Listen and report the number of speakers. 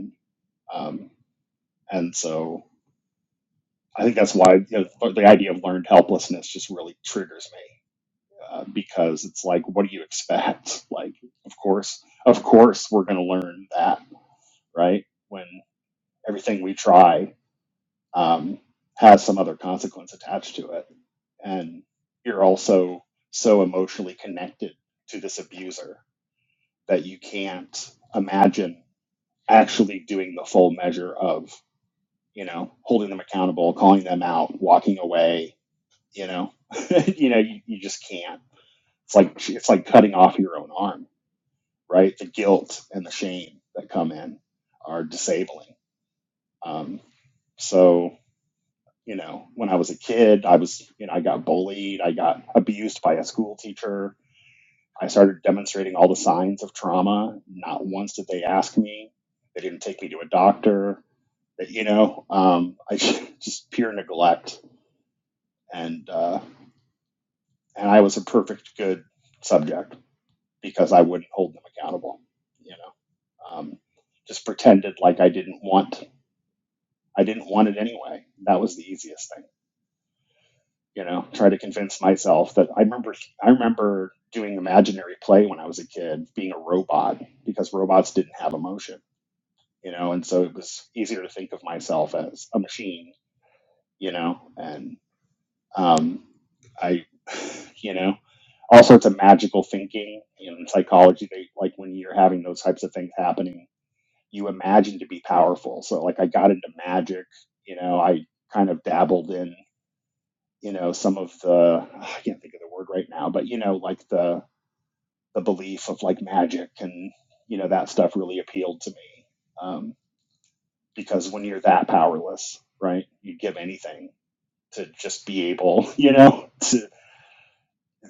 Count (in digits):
1